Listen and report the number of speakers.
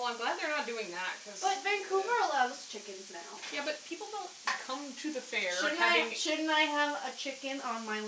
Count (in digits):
2